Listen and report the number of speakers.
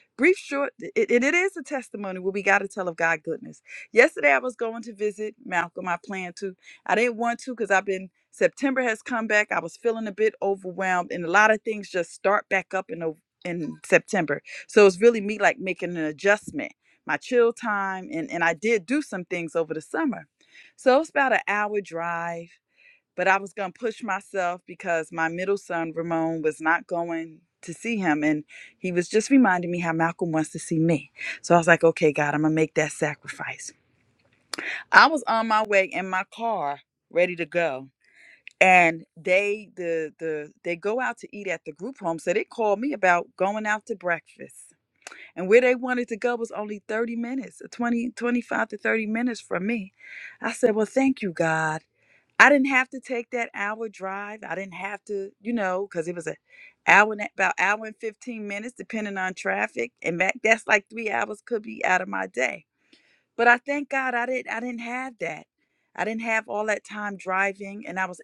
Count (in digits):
1